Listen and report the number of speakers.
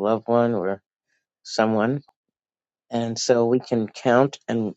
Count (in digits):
1